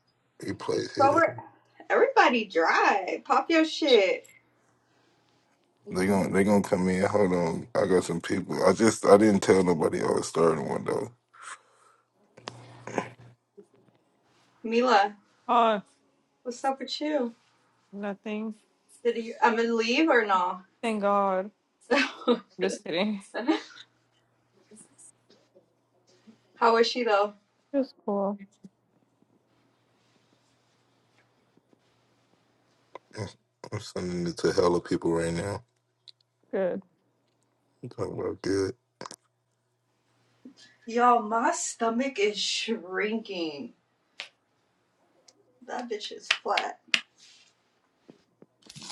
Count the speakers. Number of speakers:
three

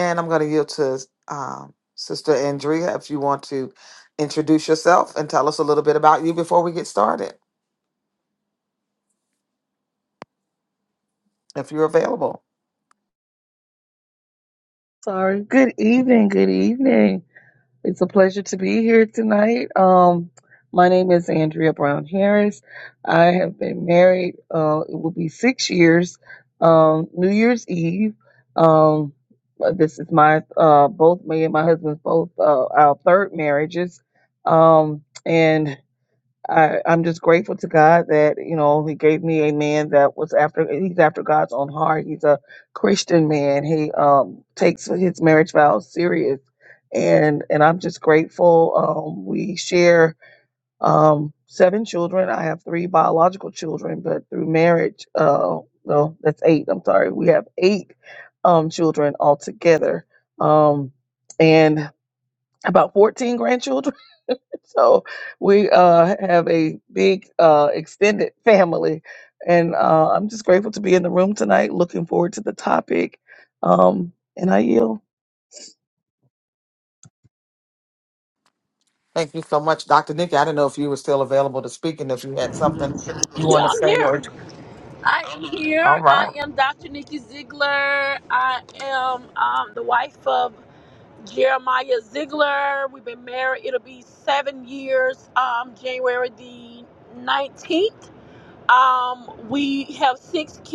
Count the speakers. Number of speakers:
three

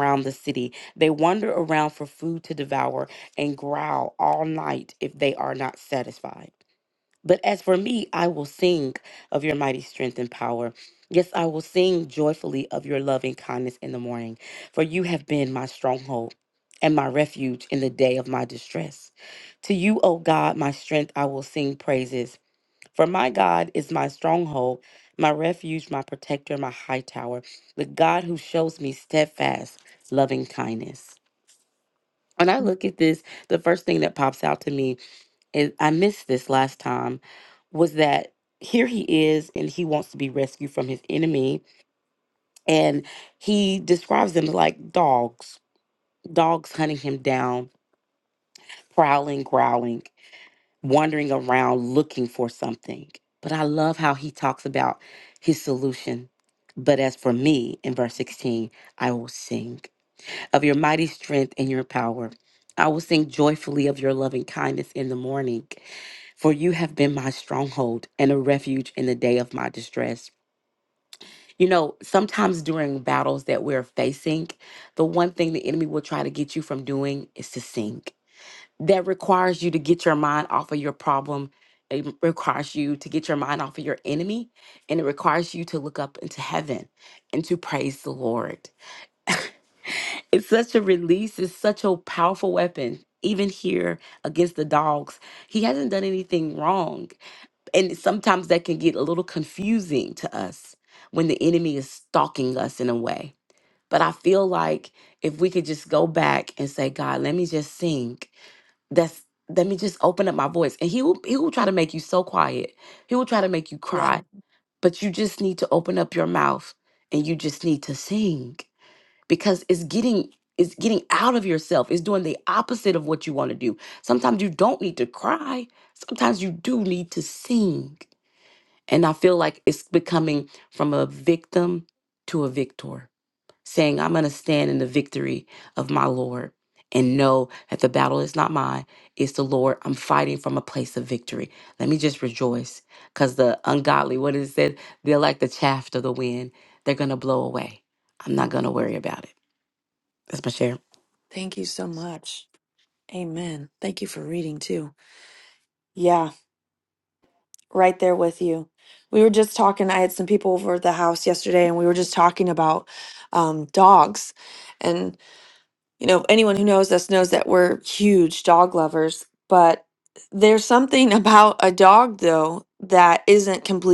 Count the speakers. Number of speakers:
two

